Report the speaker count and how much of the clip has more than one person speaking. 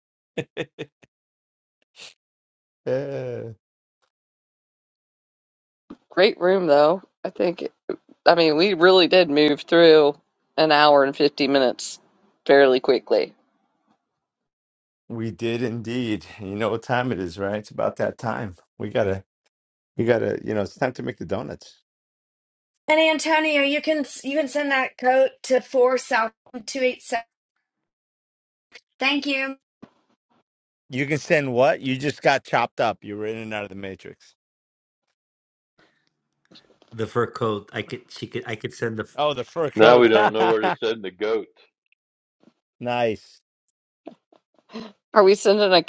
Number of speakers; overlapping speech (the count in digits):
5, about 1%